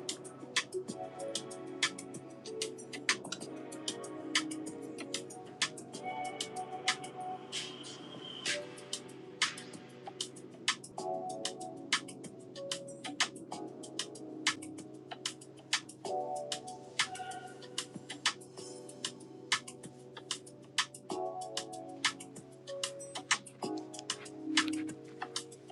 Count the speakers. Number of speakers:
0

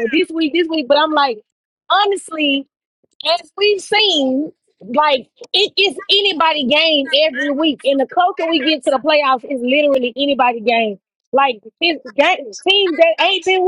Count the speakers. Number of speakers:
1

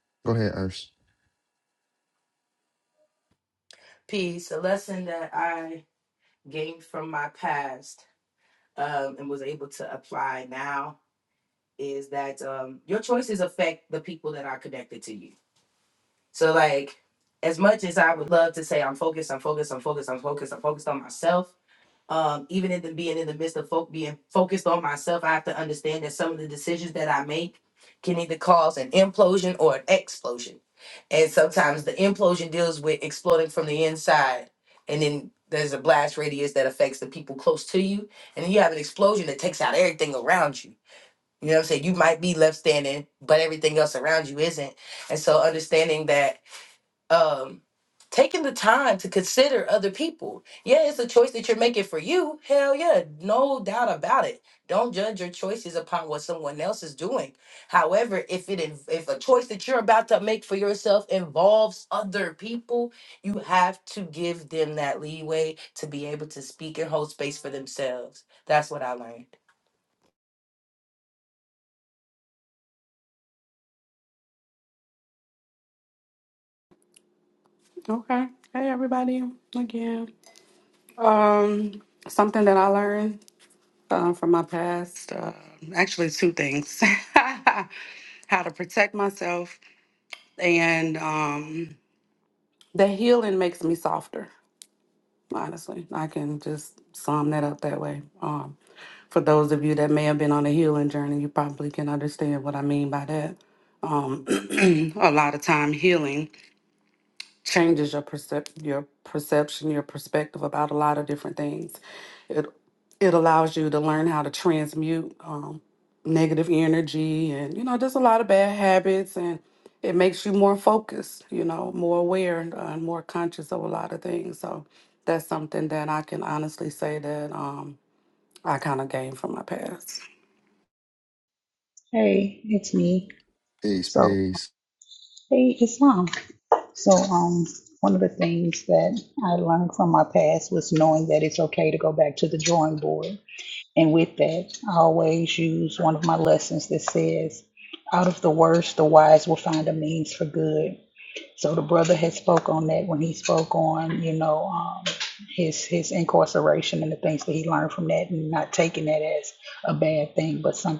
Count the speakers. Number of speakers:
4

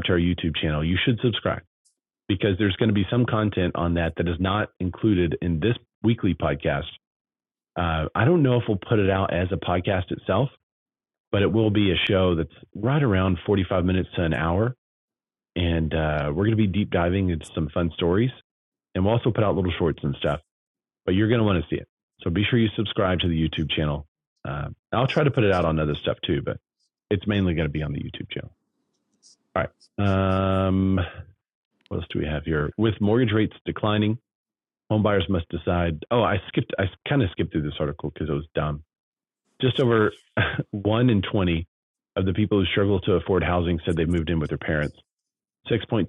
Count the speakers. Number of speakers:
1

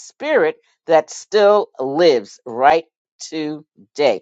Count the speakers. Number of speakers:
1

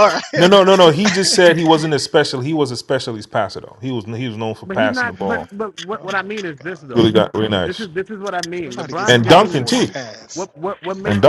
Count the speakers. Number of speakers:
3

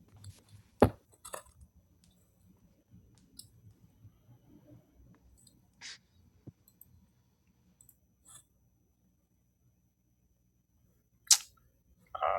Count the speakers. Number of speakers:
0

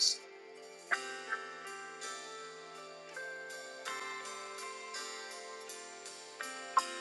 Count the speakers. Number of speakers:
0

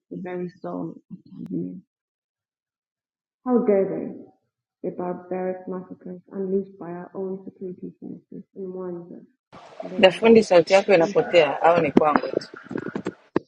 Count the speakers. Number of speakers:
2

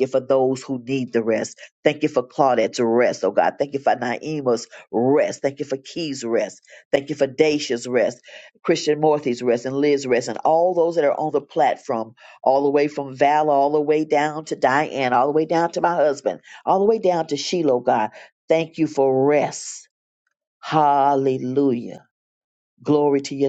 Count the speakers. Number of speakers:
1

